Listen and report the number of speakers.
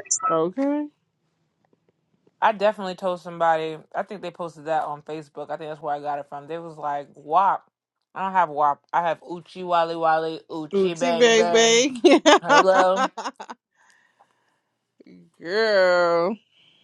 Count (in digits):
2